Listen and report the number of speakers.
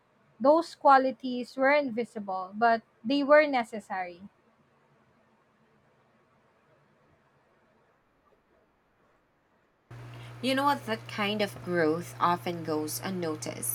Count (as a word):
two